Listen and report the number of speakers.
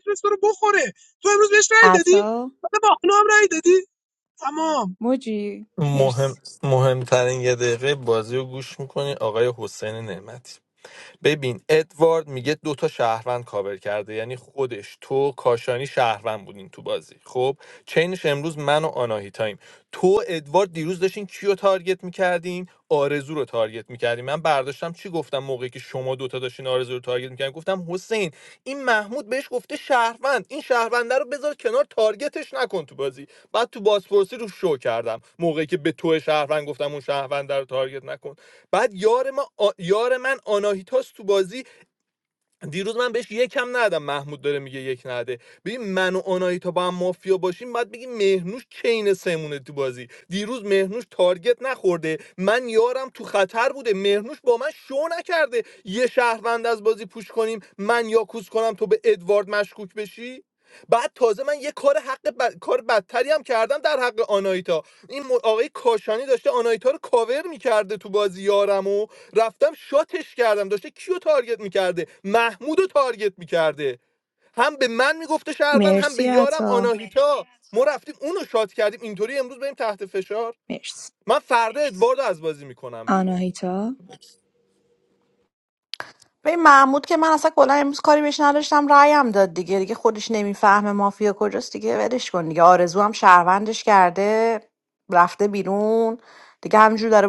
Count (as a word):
four